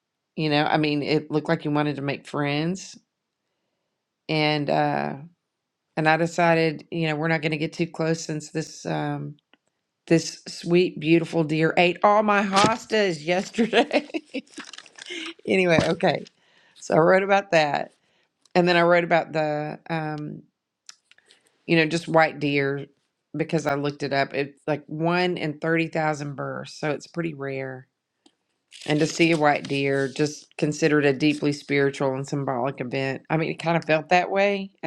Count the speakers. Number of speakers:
one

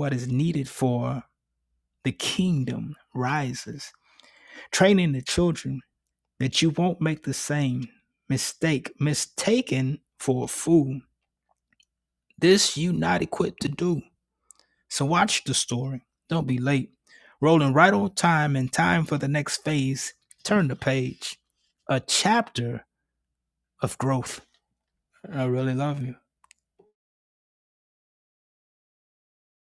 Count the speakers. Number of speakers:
one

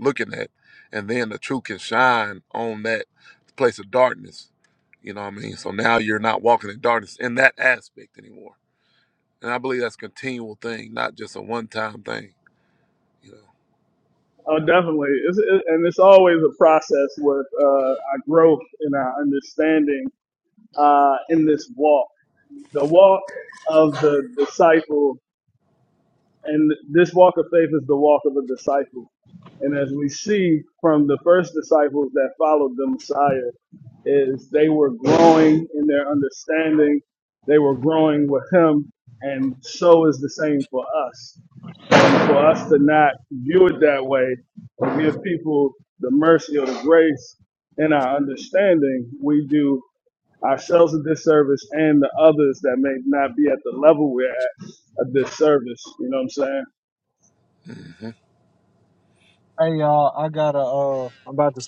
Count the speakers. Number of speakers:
three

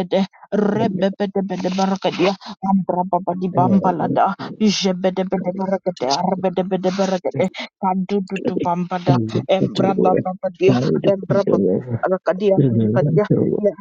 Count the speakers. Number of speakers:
two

